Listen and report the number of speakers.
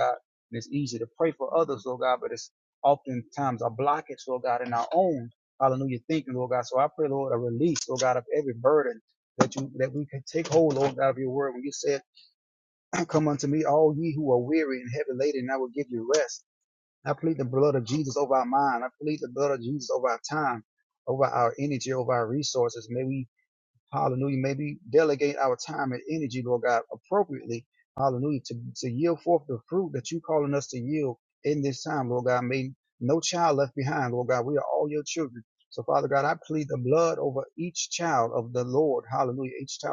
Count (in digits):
1